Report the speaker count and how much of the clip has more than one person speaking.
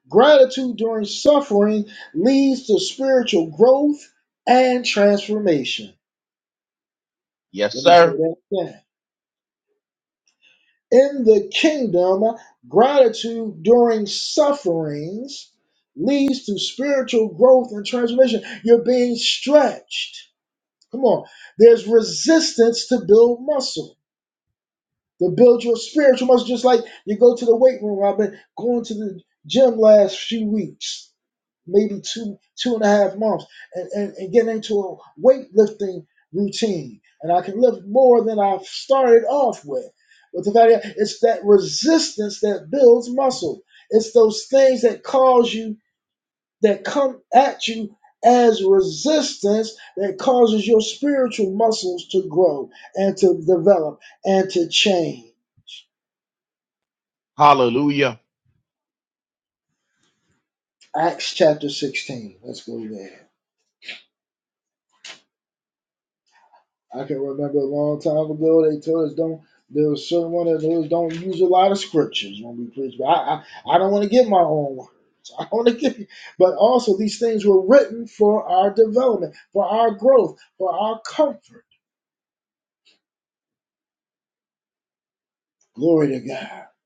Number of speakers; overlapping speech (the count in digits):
2, under 1%